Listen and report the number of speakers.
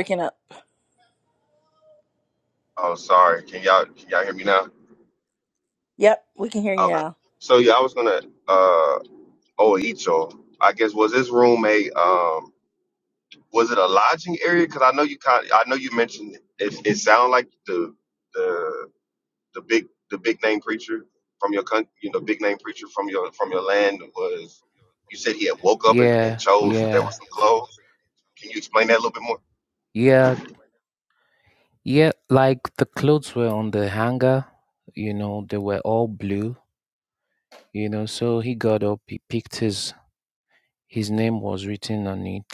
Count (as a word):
three